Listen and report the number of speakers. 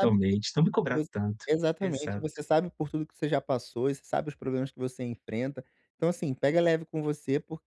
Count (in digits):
2